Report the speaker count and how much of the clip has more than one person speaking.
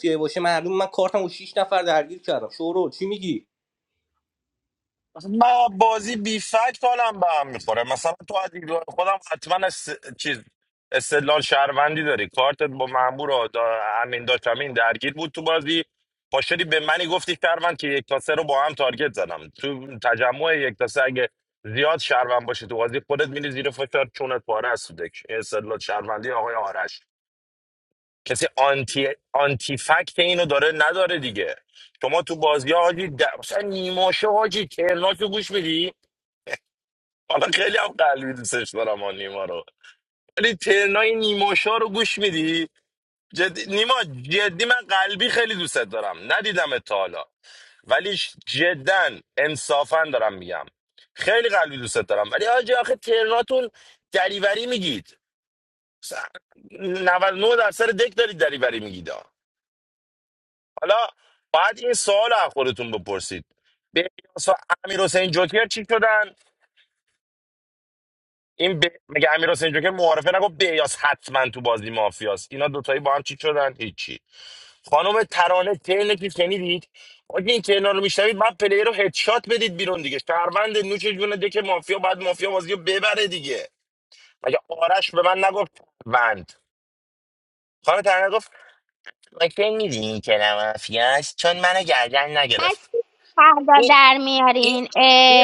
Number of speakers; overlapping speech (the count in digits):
3, about 1%